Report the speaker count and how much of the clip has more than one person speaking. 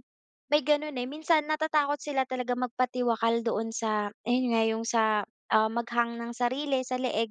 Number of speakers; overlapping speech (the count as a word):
one, no overlap